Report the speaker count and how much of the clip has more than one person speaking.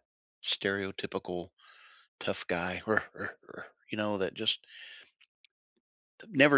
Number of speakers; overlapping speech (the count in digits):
1, no overlap